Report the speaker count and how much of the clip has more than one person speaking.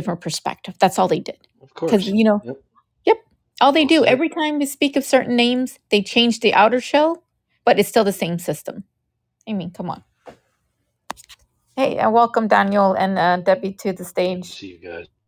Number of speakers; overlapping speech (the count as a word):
two, about 8%